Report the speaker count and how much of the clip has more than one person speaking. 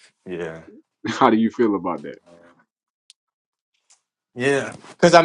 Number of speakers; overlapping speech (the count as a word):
two, no overlap